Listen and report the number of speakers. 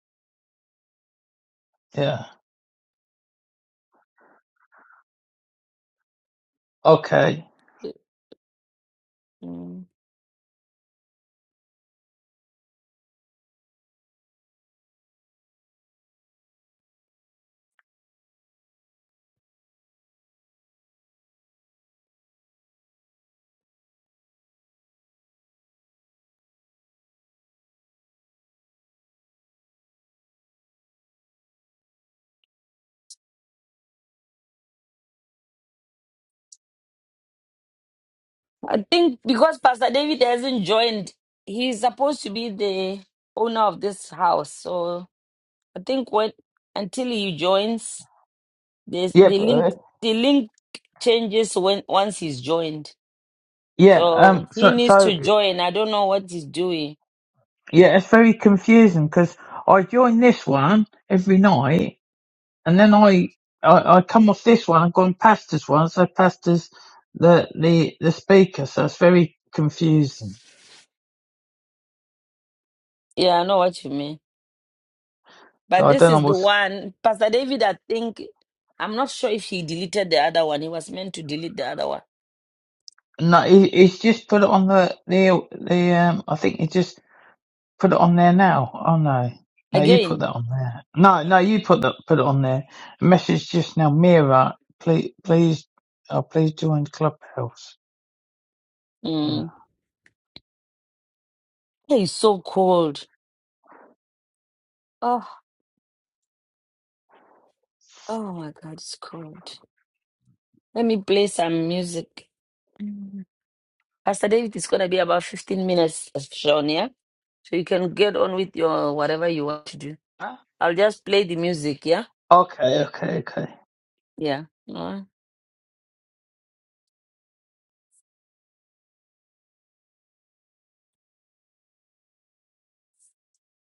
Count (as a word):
two